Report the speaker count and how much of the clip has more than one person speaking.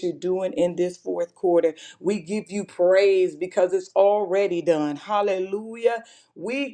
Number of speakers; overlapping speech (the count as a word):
one, no overlap